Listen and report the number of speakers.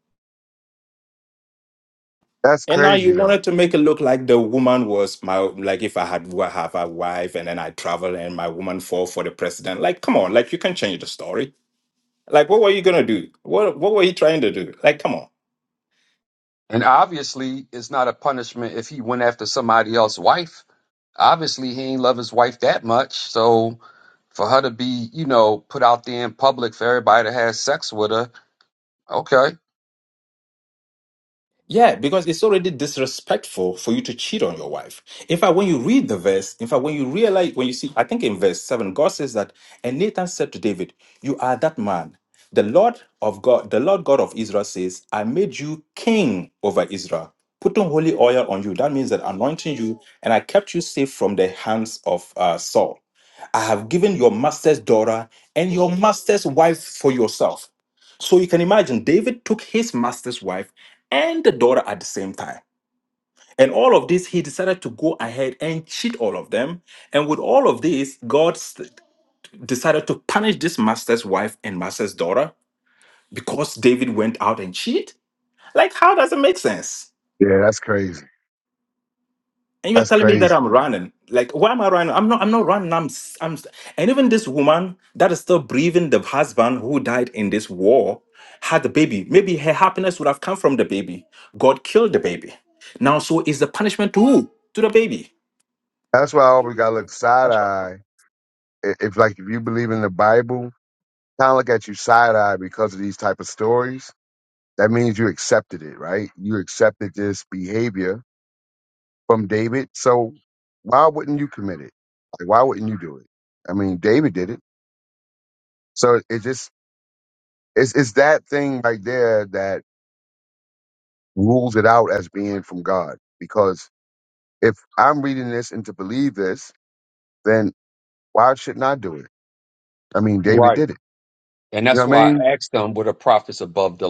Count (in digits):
3